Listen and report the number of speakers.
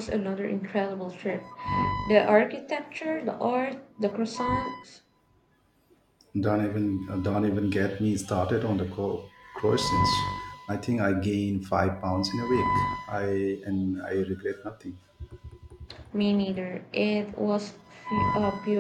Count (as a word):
two